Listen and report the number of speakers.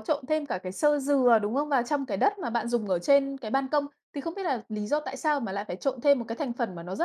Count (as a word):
one